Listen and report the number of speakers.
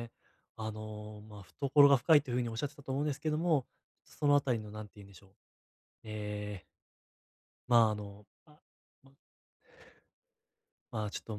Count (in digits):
1